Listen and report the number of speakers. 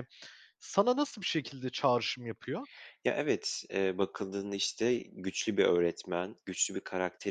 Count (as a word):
two